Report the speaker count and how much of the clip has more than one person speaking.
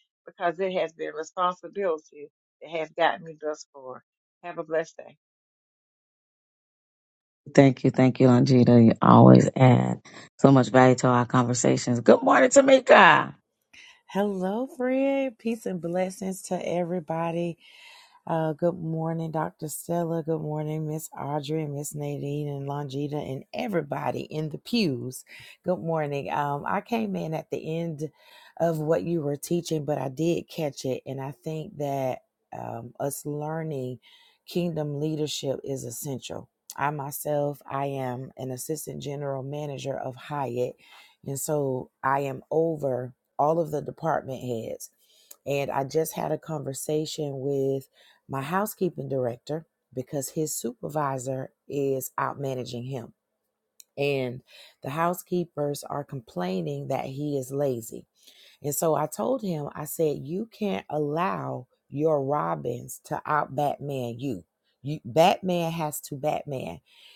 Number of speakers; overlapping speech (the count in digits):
3, no overlap